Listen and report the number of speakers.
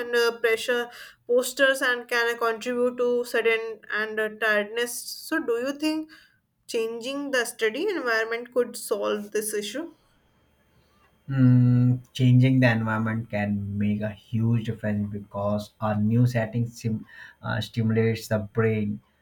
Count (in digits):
2